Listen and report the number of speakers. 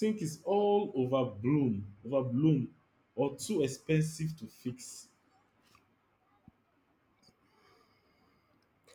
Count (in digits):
1